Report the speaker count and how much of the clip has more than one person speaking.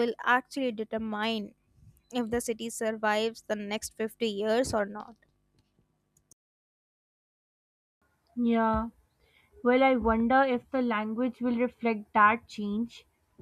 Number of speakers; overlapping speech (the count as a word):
two, no overlap